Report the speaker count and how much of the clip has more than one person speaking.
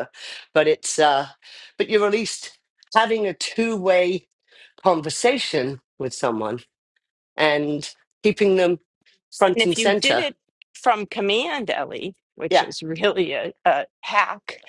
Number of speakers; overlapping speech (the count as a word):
two, about 7%